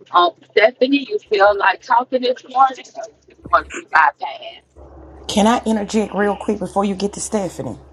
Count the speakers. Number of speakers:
two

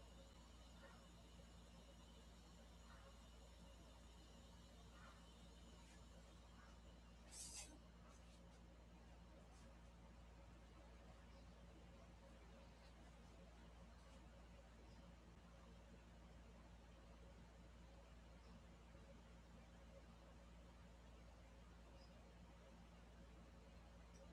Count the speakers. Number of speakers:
zero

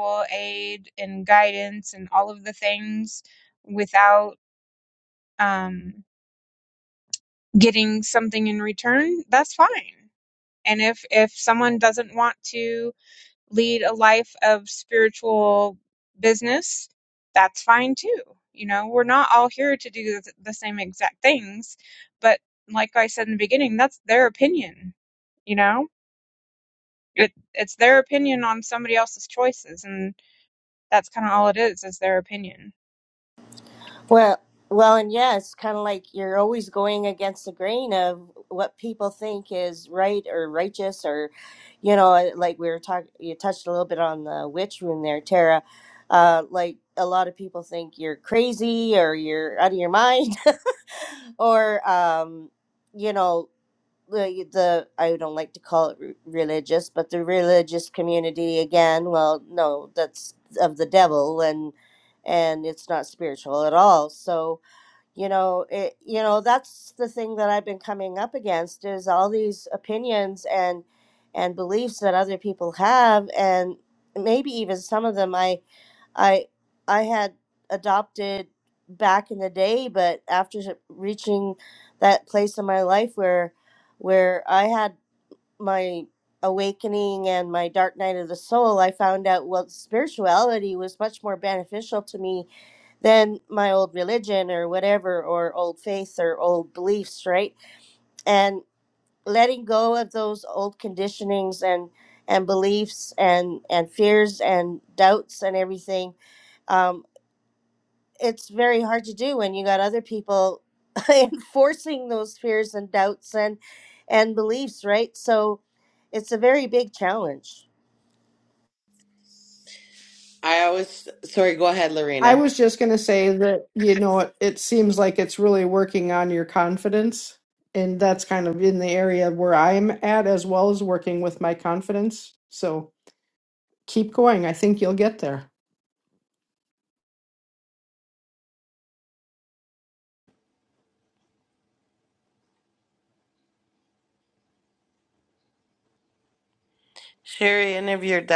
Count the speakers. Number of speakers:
four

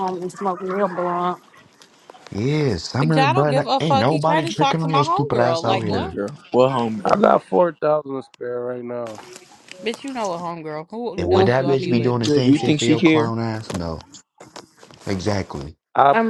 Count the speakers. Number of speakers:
five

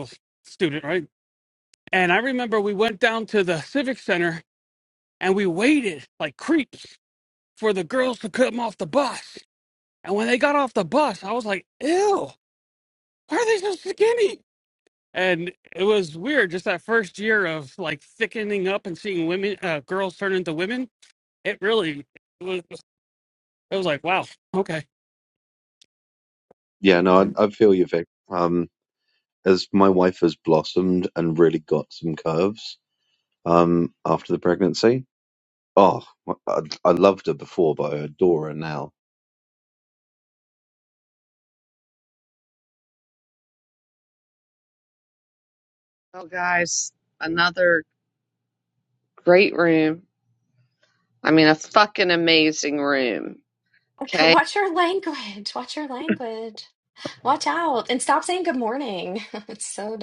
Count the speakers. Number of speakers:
four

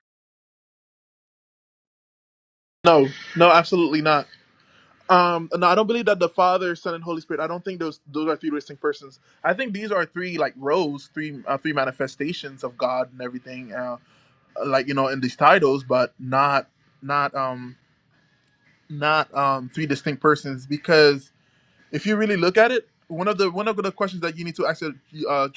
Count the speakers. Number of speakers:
one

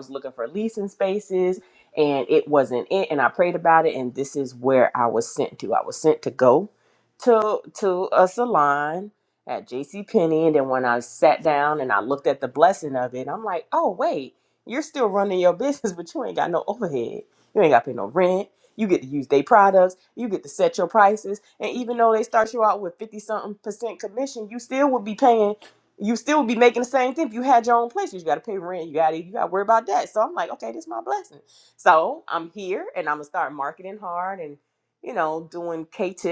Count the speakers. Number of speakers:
one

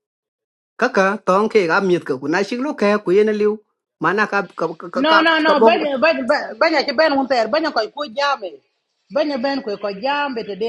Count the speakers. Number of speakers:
two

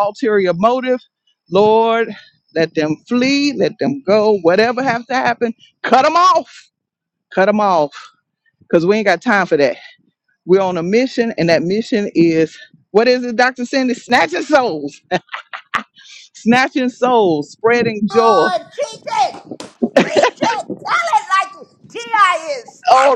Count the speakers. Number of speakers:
two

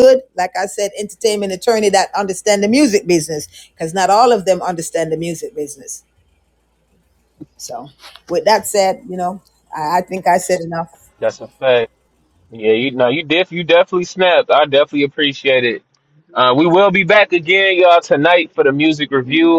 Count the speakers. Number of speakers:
two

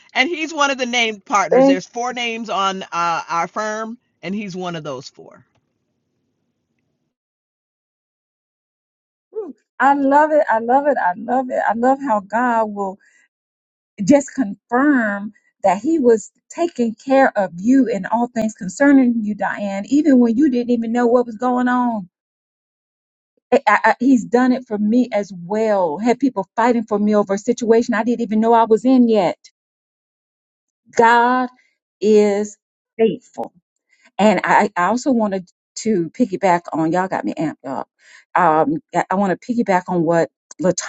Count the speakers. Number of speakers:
two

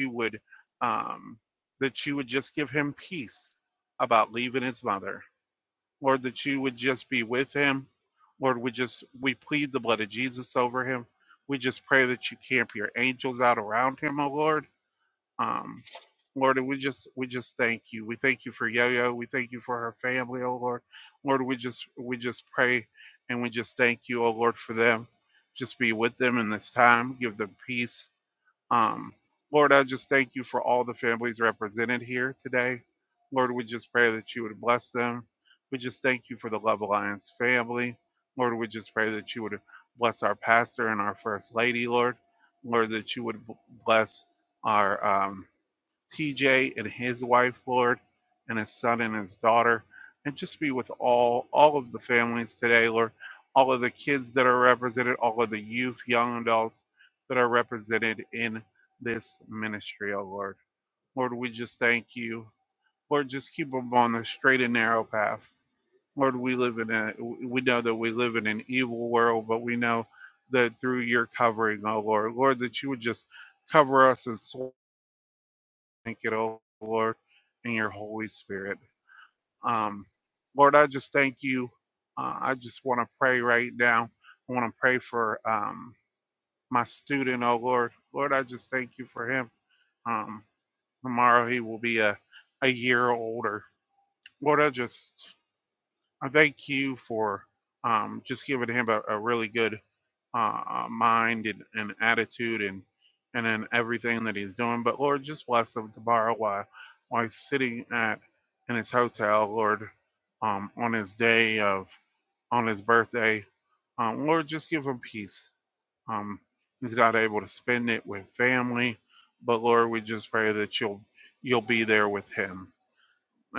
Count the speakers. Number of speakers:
one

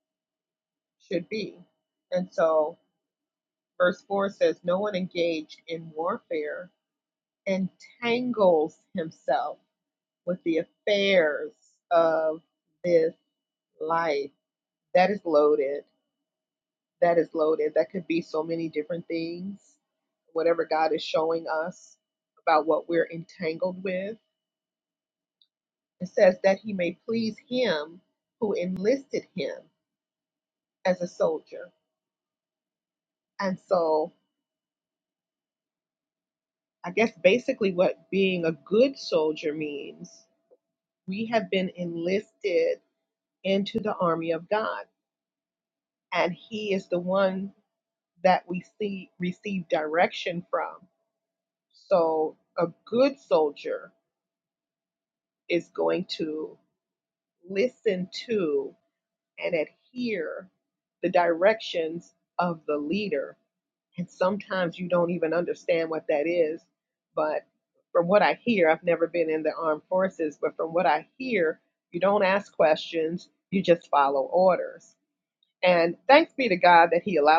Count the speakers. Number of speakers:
one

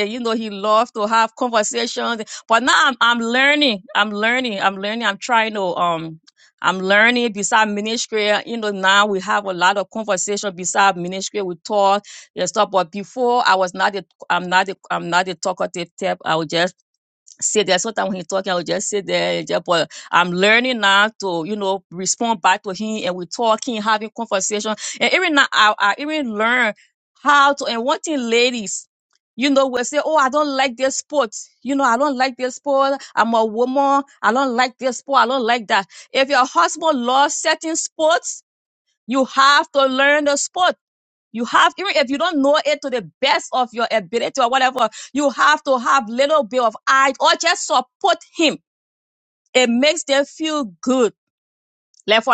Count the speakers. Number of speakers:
one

